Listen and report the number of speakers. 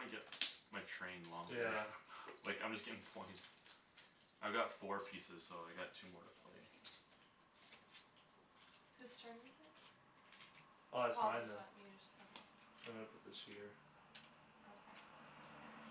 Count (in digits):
3